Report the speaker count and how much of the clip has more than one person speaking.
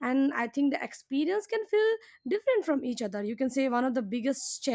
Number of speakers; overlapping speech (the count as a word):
one, no overlap